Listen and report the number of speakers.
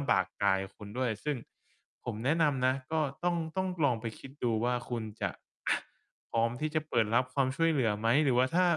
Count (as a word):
one